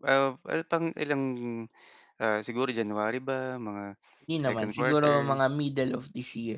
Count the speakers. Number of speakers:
two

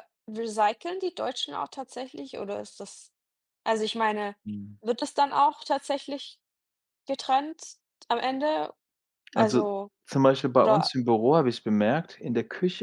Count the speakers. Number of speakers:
two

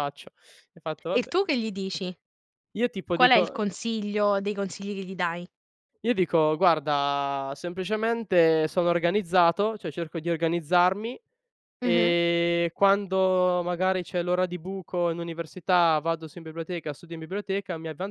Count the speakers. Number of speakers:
two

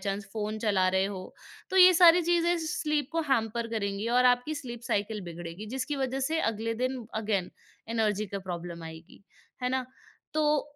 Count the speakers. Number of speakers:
one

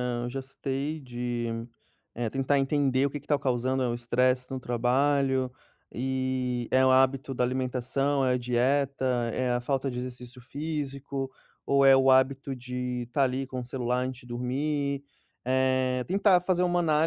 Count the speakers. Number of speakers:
one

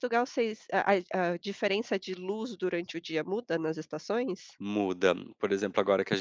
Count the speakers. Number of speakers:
two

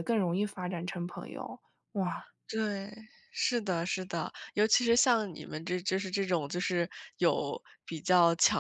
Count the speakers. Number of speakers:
two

